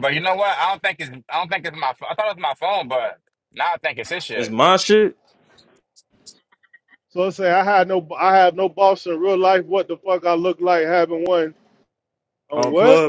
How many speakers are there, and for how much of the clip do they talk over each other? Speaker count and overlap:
3, about 5%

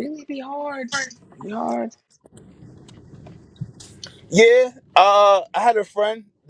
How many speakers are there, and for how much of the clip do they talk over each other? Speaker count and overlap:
2, no overlap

